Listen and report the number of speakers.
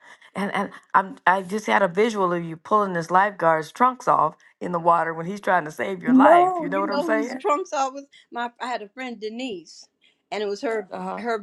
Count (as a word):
two